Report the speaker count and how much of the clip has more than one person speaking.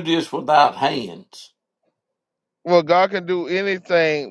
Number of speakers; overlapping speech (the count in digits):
2, no overlap